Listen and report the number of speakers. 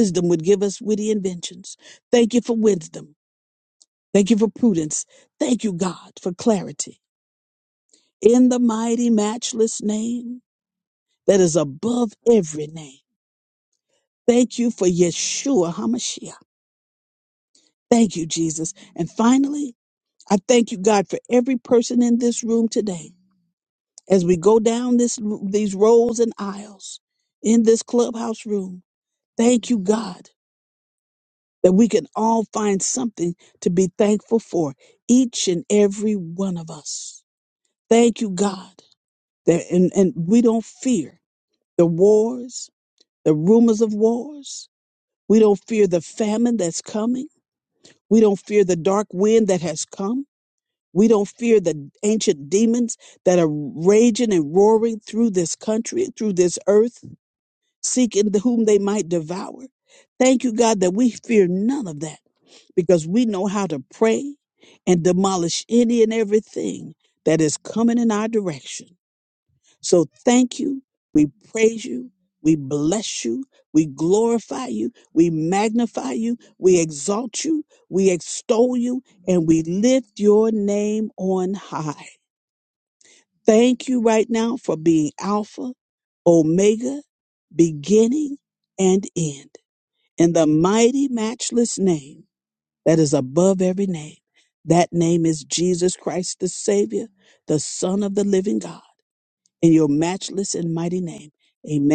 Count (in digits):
1